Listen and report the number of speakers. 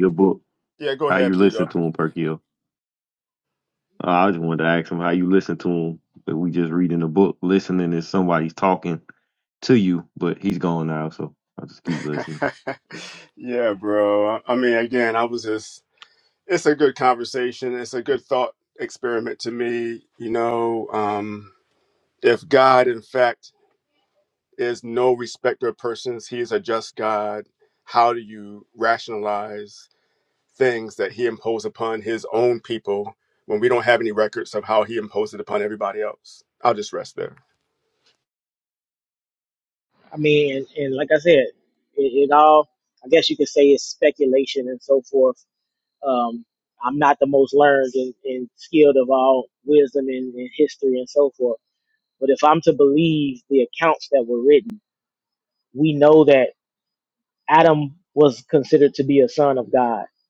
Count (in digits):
3